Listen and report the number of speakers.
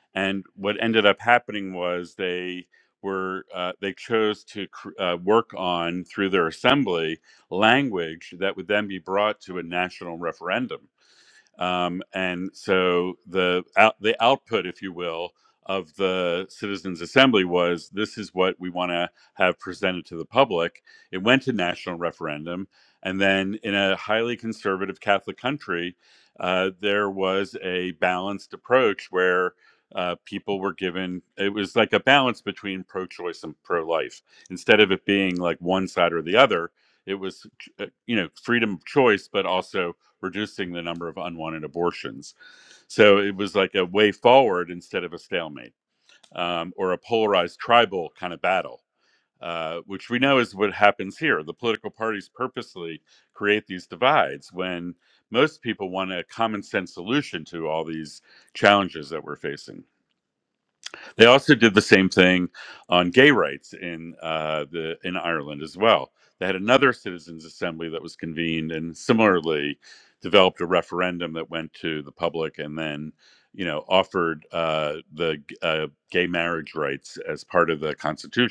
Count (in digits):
1